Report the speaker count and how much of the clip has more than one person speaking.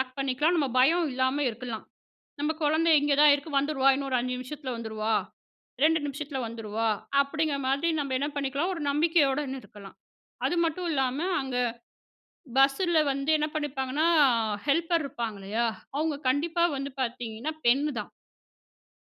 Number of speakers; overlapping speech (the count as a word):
one, no overlap